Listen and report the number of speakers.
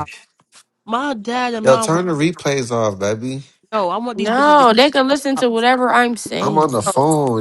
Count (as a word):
three